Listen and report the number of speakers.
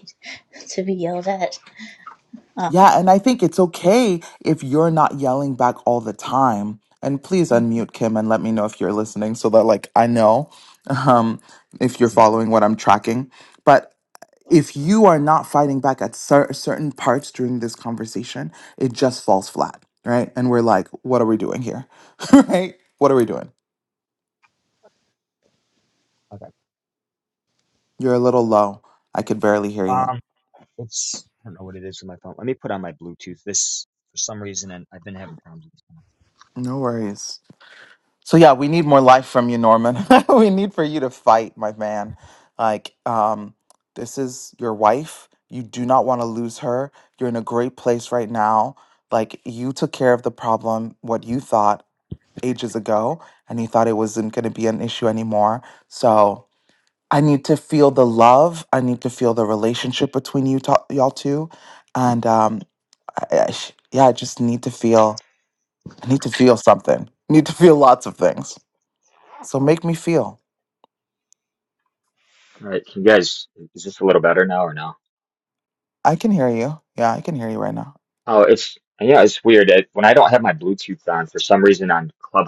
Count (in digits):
3